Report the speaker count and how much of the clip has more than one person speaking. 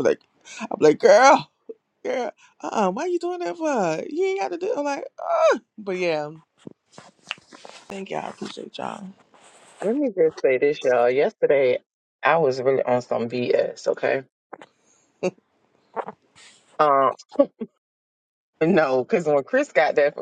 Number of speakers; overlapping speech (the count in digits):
2, no overlap